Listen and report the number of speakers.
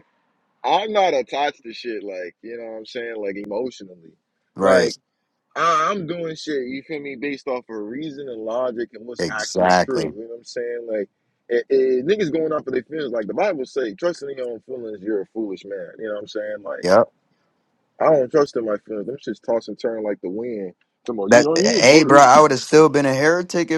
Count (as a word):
two